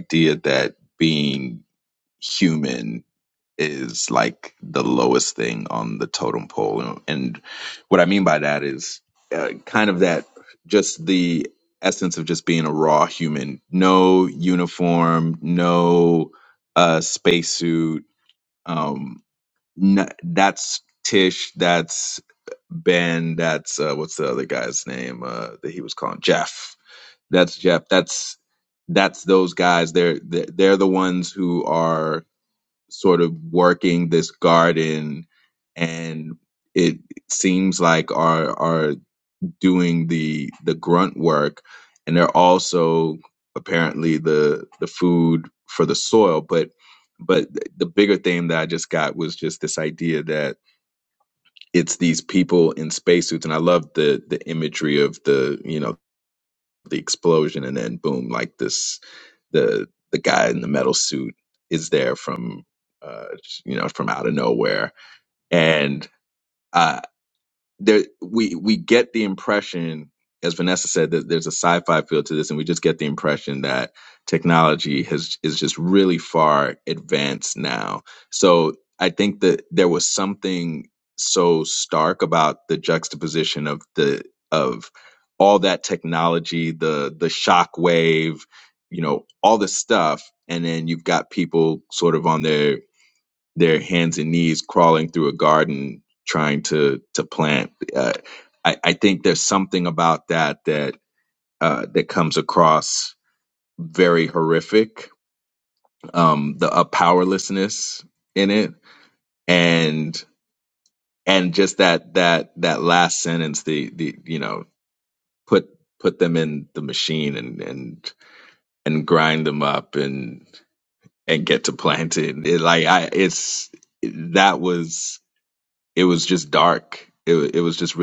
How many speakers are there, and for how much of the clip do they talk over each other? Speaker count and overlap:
1, no overlap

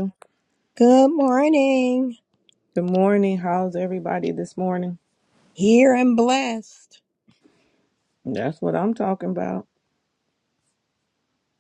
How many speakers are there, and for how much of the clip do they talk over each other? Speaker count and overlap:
2, no overlap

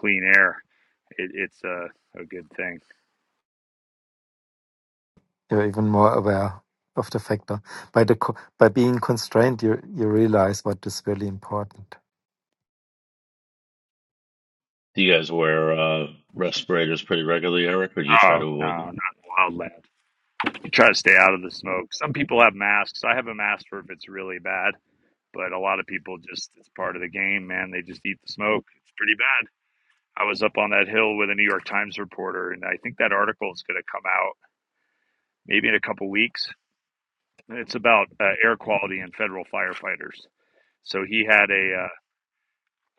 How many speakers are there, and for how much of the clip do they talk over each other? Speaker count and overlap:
3, about 2%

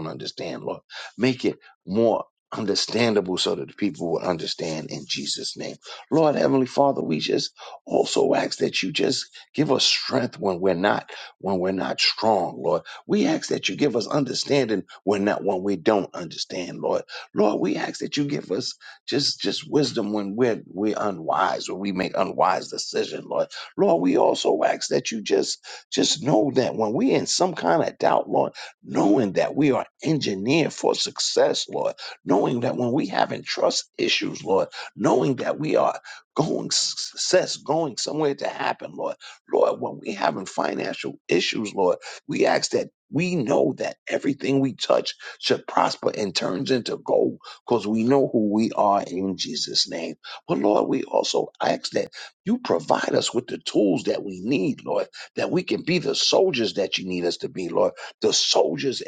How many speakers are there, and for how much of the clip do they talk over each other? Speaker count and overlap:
1, no overlap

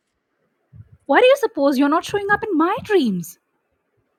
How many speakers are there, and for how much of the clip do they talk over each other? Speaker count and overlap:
1, no overlap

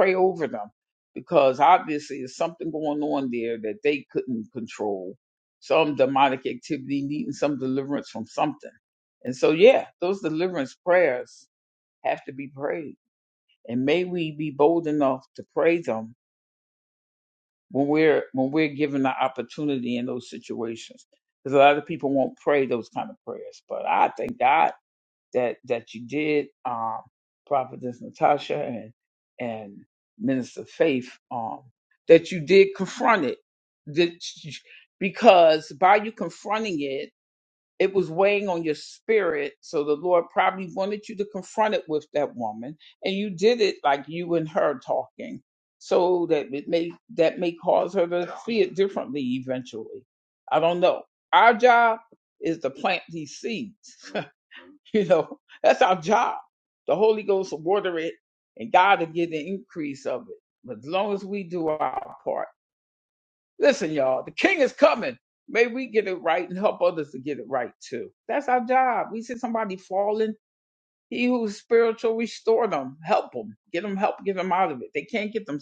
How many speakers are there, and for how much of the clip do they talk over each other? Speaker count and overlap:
1, no overlap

